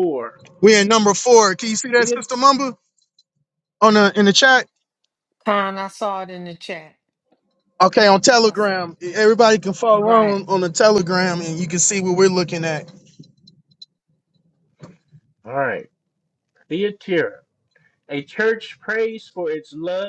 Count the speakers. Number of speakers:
three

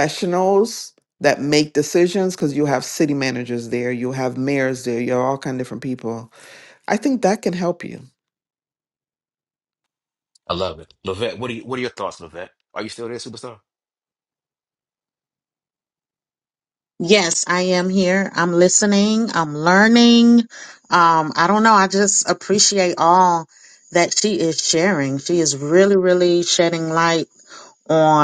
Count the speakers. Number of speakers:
three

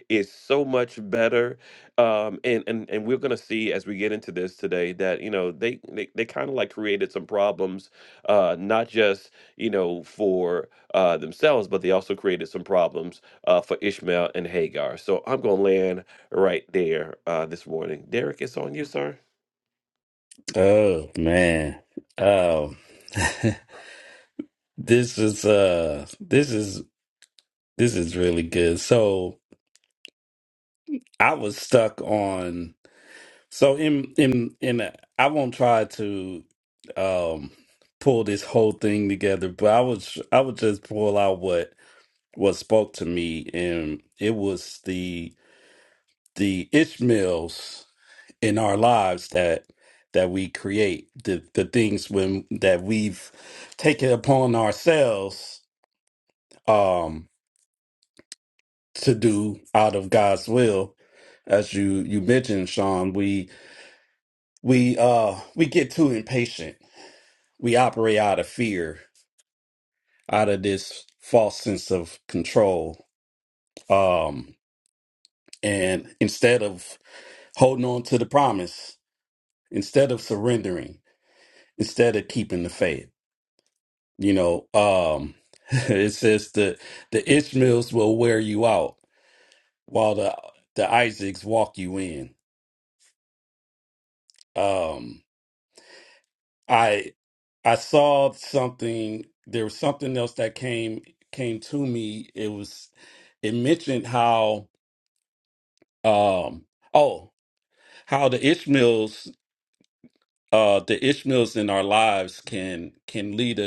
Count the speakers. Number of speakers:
two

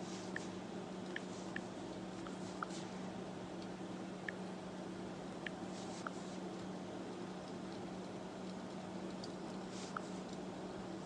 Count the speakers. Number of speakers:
zero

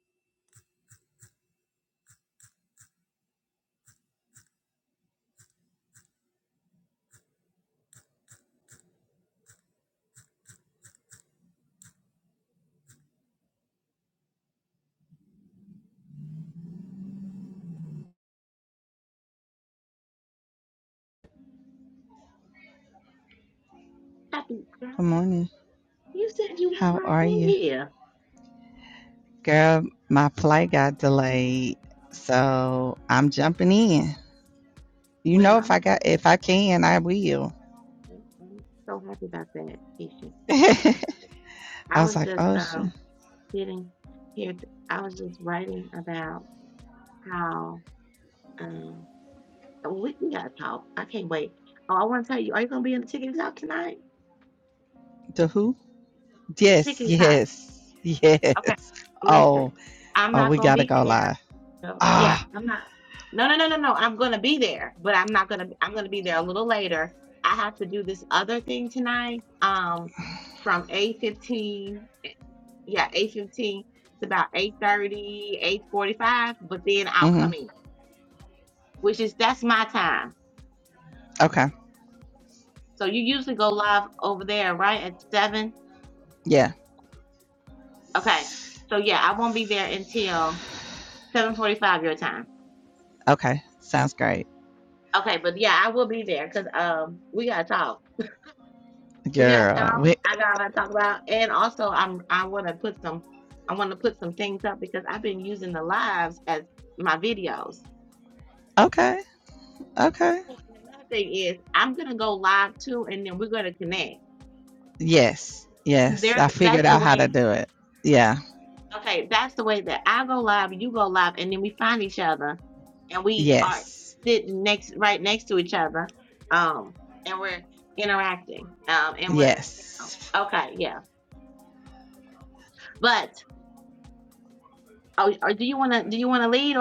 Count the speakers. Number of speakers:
two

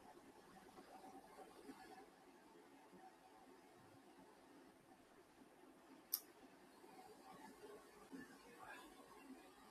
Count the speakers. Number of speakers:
zero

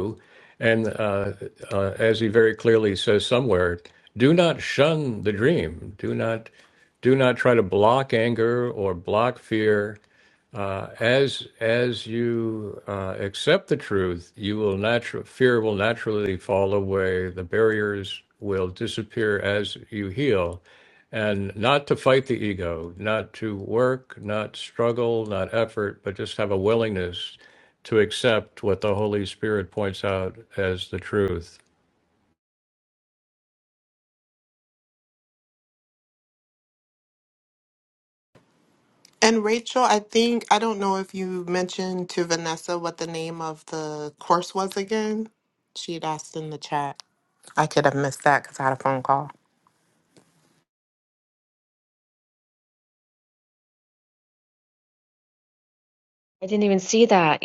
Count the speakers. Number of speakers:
three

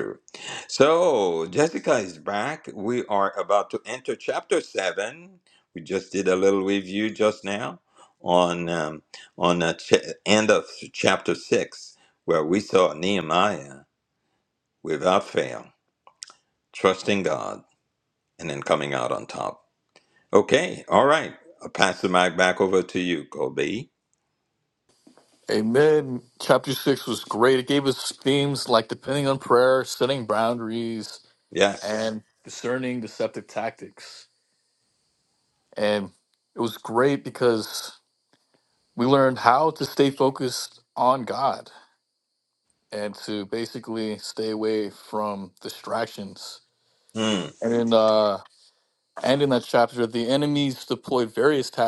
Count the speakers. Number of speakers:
two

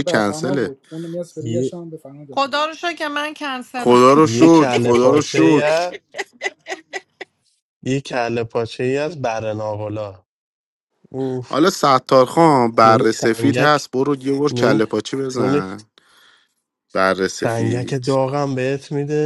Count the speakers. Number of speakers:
four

